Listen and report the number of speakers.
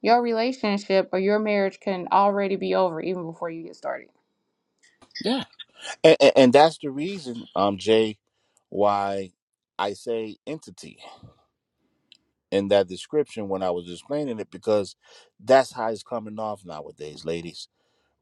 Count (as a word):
two